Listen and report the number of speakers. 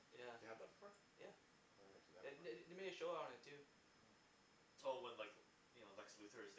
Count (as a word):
three